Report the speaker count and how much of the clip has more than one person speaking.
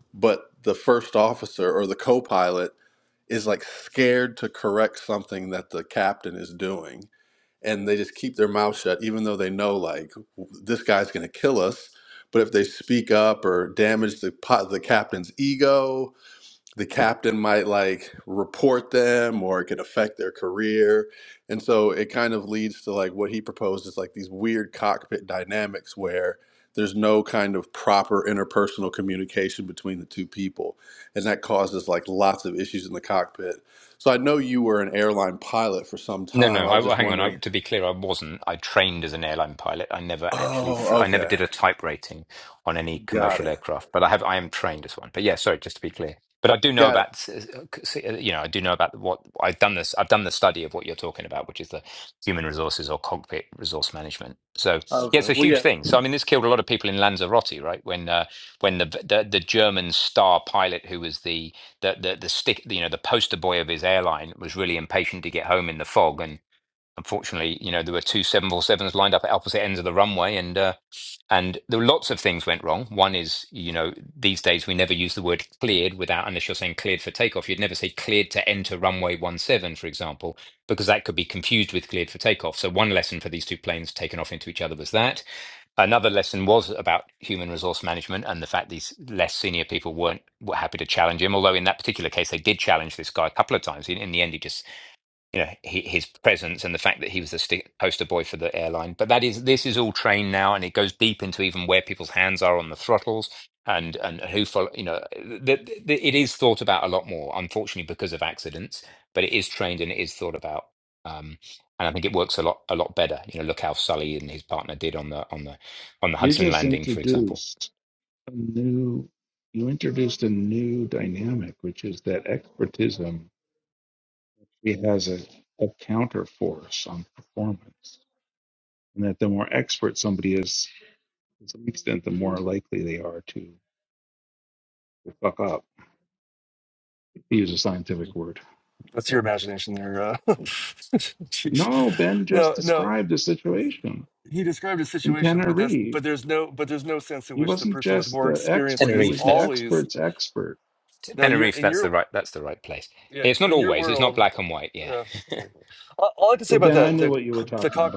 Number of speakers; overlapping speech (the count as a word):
four, about 8%